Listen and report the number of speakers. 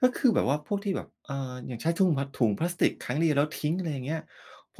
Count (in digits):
1